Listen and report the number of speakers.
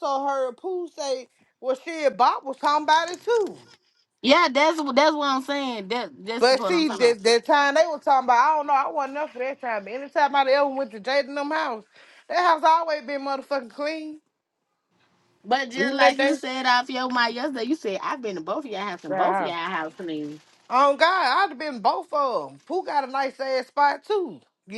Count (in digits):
2